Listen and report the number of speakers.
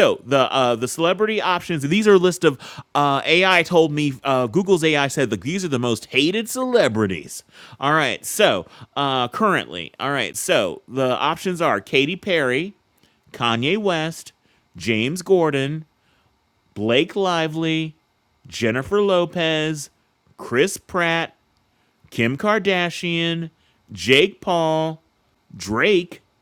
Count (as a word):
one